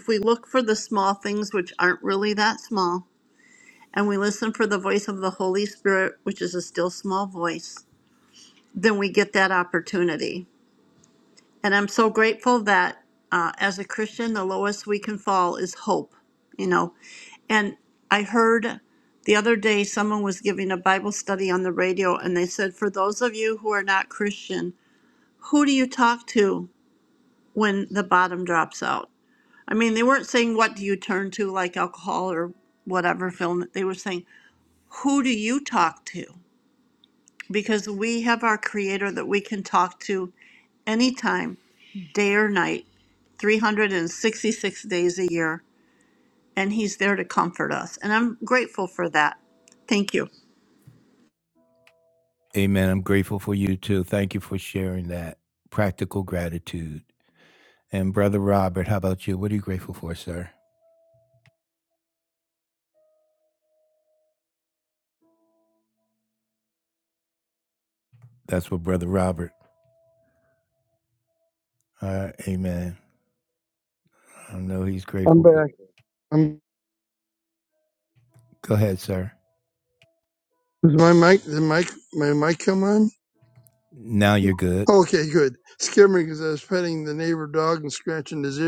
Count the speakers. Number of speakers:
three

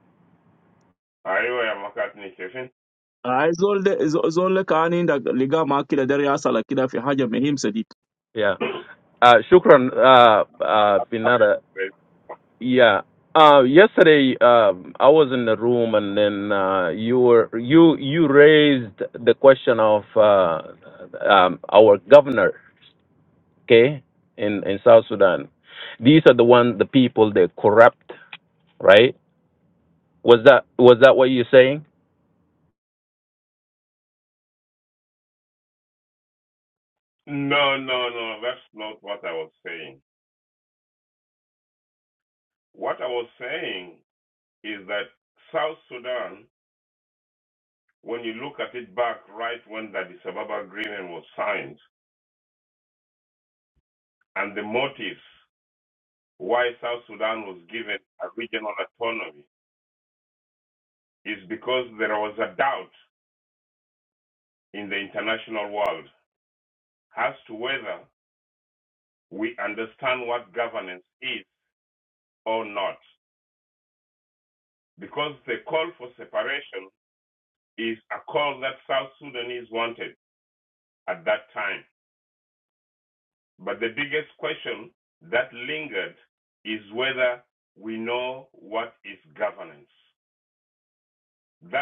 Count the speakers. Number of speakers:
three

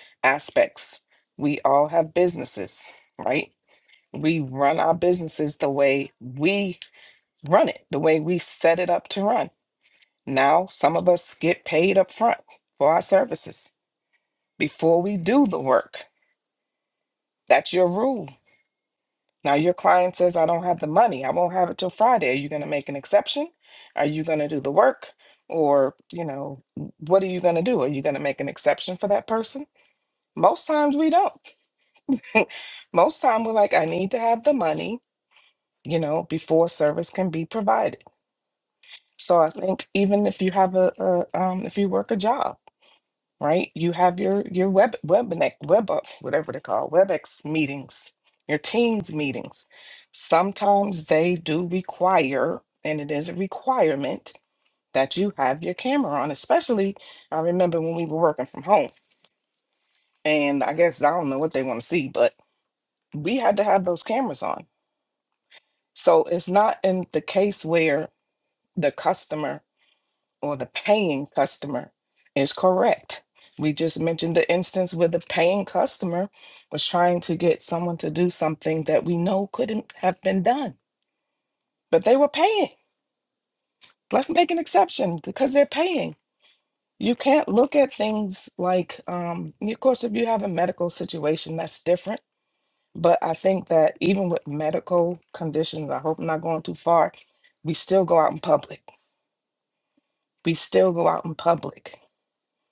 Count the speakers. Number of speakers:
one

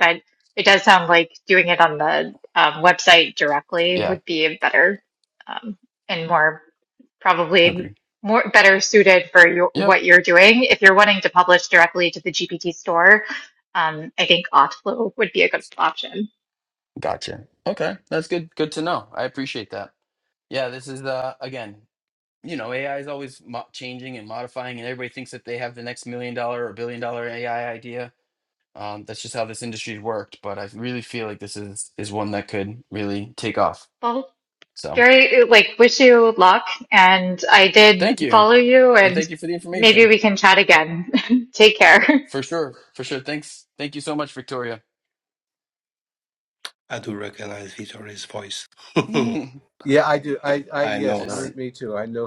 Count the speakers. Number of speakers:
four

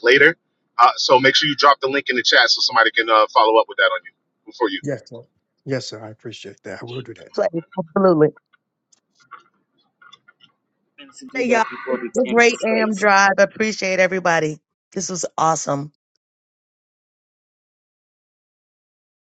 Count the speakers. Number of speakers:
three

